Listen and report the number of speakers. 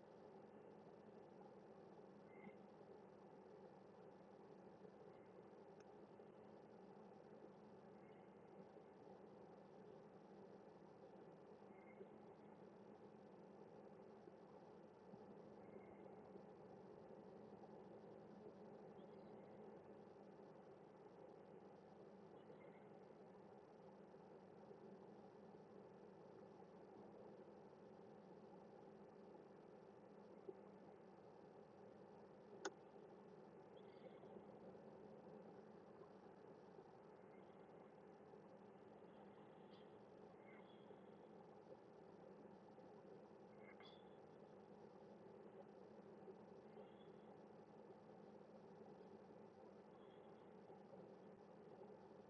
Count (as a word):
zero